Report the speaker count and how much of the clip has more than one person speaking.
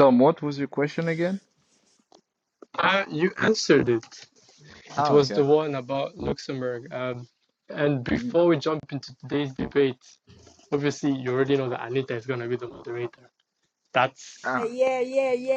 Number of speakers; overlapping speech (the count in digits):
3, about 5%